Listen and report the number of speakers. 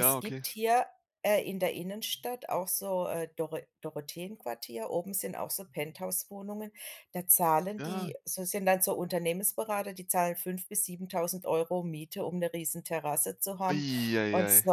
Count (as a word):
two